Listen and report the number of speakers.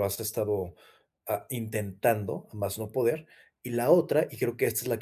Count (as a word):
one